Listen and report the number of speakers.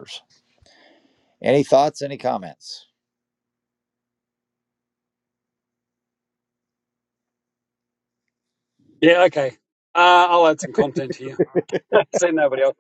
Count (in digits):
2